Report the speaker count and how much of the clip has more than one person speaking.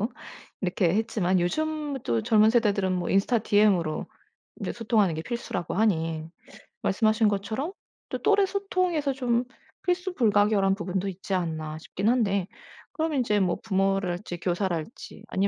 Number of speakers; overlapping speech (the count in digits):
1, no overlap